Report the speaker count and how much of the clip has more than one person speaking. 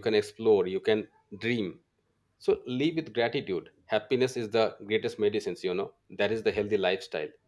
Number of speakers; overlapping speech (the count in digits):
1, no overlap